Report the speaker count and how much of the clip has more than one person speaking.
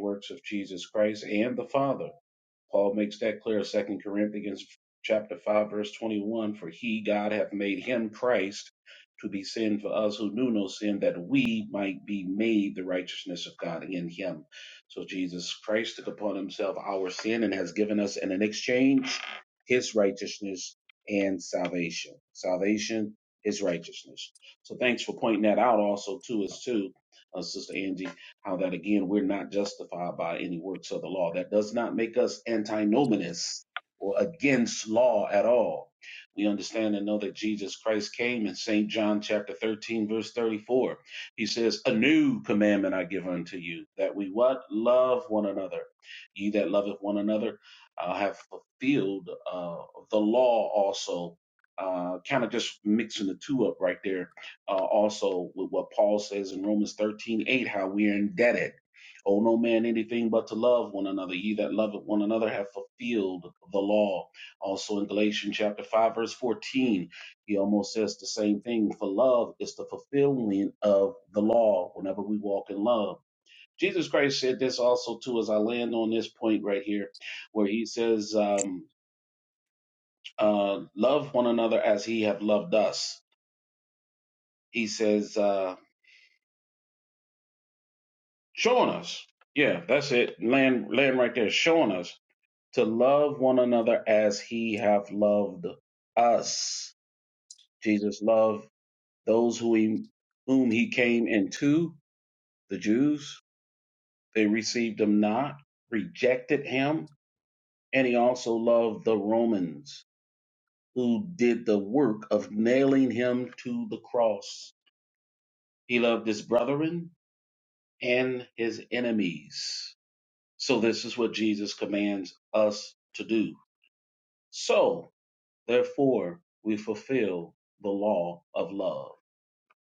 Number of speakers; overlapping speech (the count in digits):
1, no overlap